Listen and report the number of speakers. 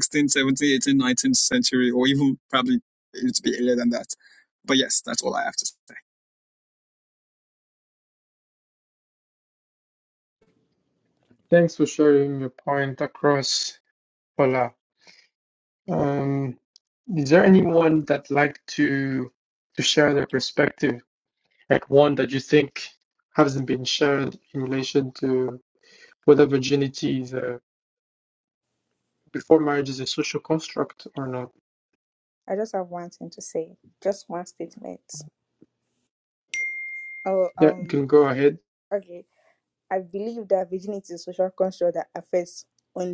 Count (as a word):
three